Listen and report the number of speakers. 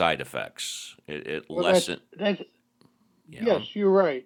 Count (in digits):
2